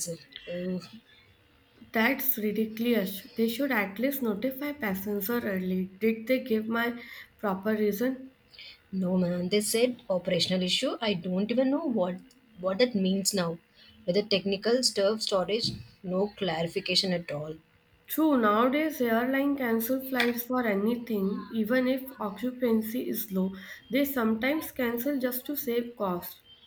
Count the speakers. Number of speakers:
2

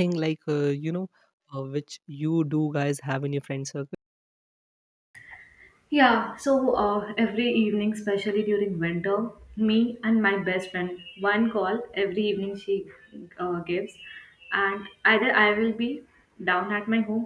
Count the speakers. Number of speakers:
2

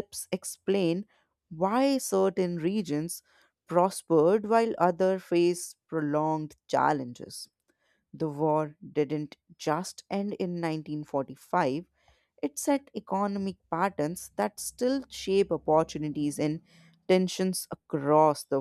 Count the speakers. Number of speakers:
1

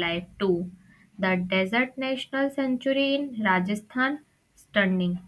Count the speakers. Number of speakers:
1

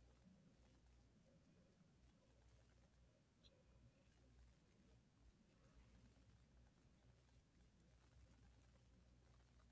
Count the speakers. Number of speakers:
0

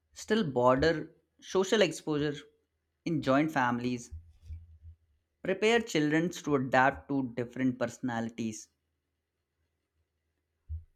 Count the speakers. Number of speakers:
1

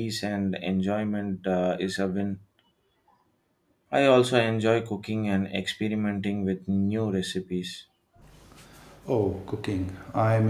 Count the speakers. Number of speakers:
2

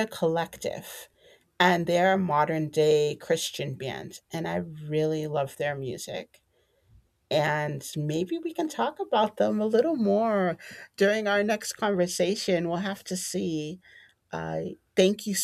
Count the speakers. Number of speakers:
1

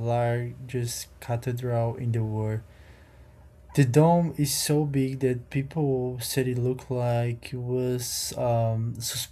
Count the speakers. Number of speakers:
1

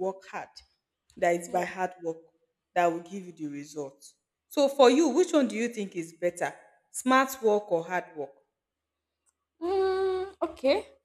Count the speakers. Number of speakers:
2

